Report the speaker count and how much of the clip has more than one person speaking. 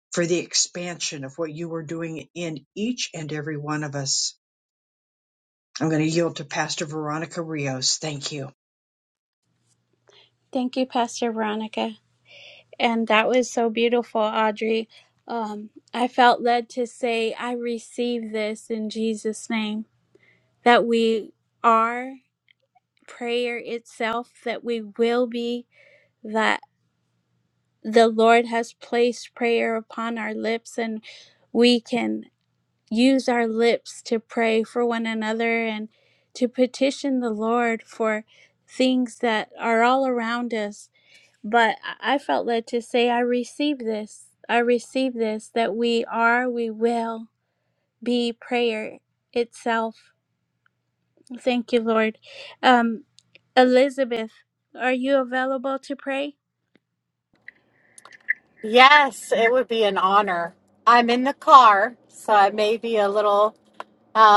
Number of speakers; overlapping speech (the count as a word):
three, no overlap